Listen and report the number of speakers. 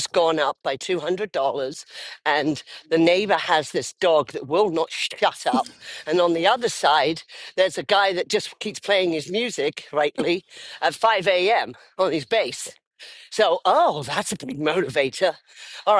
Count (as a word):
one